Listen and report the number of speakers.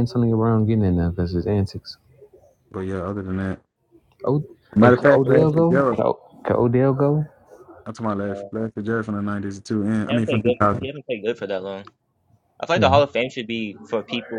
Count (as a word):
three